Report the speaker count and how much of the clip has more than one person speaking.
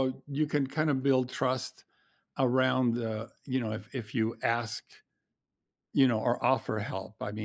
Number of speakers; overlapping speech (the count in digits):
1, no overlap